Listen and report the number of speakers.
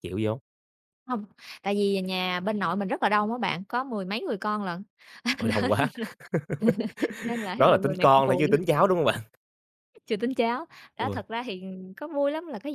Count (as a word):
two